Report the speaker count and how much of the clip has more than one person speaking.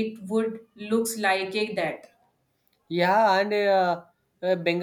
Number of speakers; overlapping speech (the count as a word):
two, no overlap